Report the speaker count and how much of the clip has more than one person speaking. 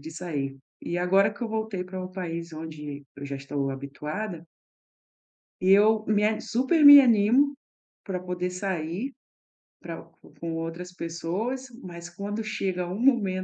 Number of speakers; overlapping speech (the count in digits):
1, no overlap